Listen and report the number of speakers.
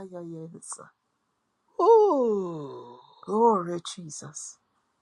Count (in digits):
2